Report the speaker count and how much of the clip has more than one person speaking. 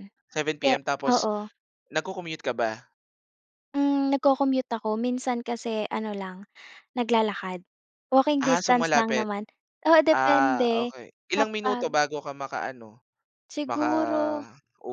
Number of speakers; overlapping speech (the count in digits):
2, about 24%